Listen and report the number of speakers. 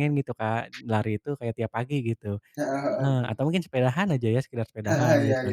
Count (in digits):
2